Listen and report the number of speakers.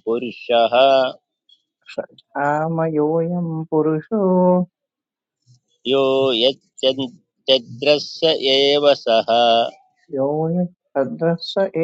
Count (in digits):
2